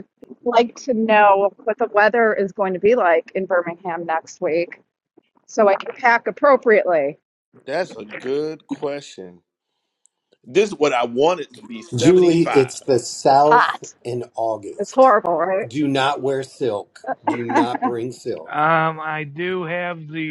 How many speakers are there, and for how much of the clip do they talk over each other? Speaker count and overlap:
4, about 7%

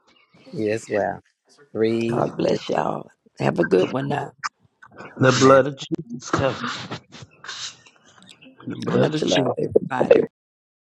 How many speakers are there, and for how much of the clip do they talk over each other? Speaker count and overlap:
3, about 14%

